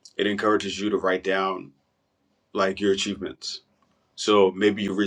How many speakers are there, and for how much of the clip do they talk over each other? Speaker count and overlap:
one, no overlap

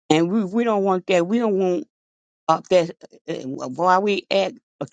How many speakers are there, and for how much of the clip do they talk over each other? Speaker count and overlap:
one, no overlap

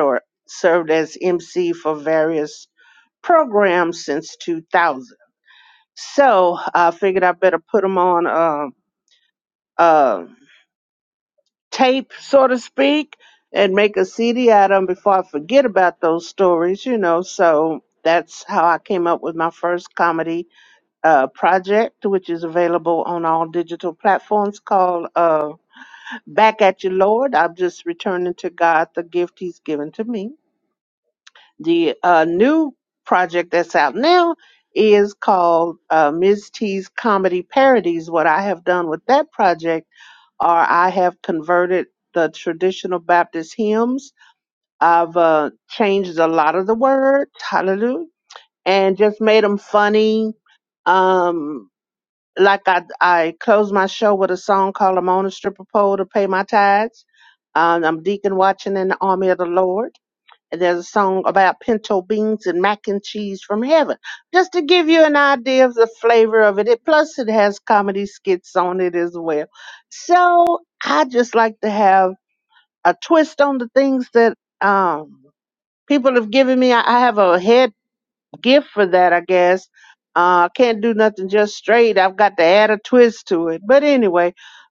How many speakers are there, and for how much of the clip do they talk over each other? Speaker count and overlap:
one, no overlap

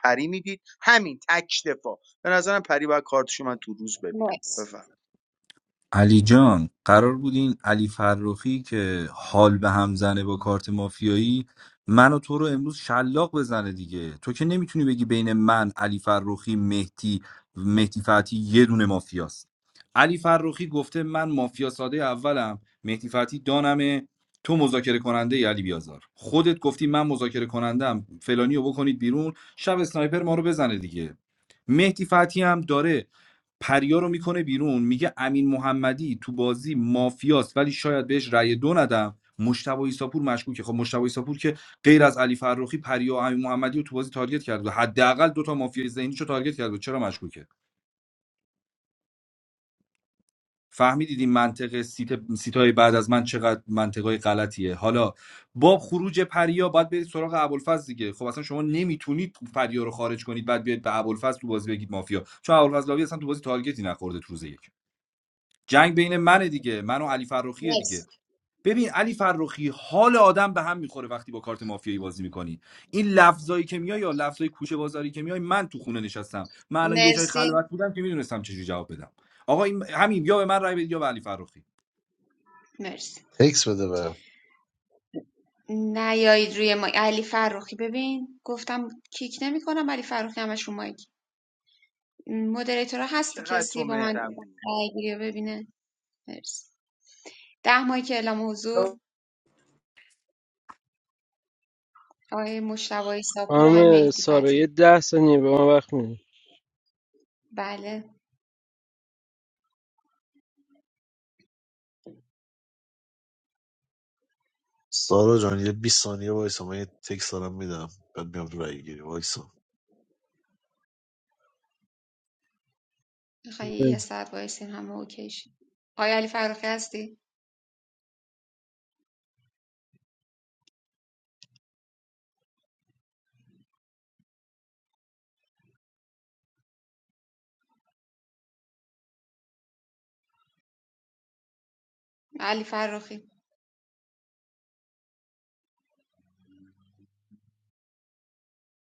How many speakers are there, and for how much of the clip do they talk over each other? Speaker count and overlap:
five, about 2%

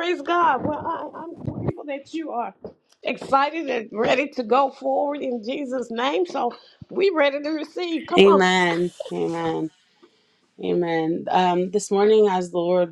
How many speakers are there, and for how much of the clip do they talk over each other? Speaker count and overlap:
two, about 3%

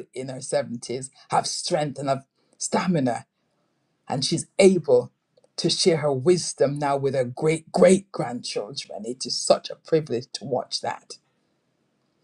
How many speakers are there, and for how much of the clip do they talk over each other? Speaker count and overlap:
one, no overlap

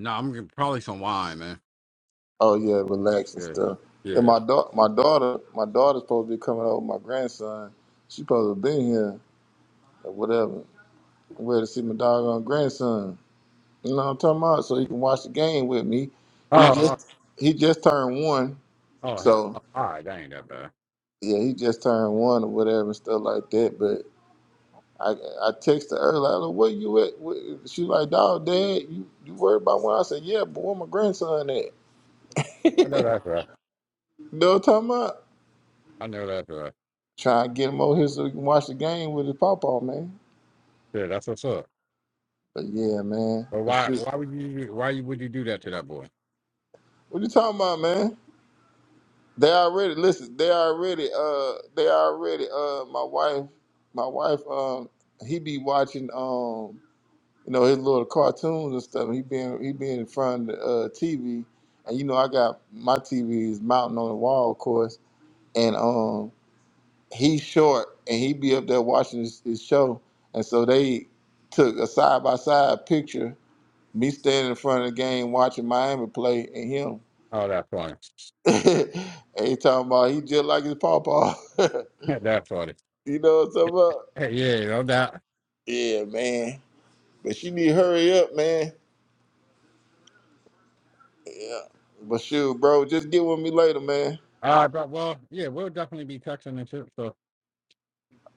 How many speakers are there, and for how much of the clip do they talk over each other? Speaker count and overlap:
two, about 2%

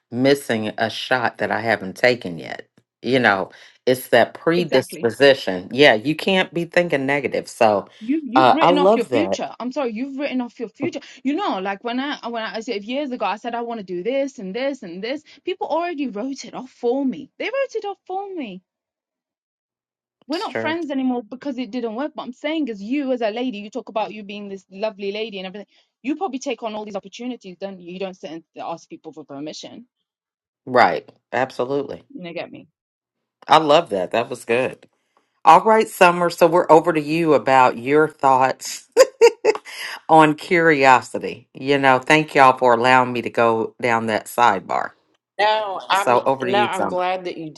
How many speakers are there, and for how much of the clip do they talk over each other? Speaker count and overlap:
three, about 6%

